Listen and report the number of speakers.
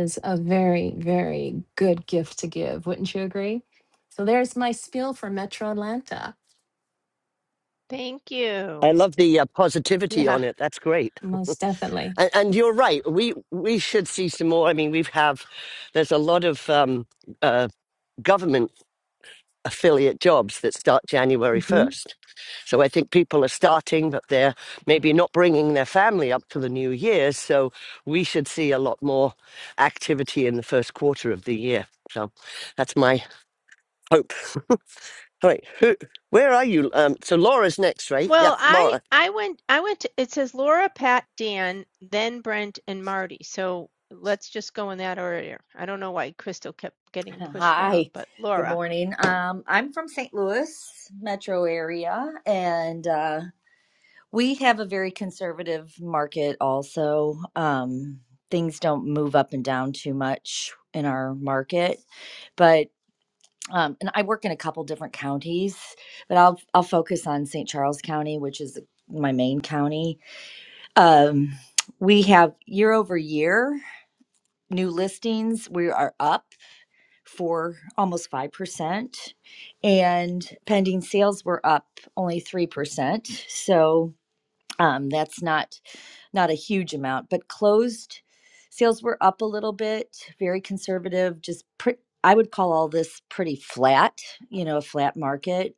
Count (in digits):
4